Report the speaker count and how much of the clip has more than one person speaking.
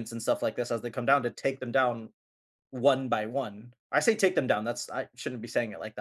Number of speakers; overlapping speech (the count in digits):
1, no overlap